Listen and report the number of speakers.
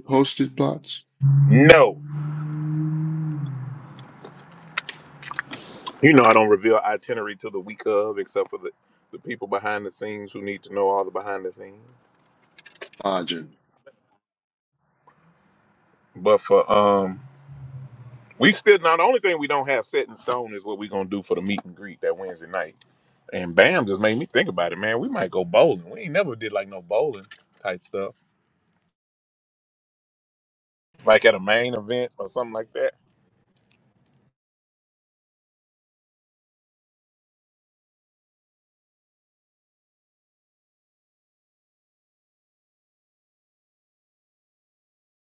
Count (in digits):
2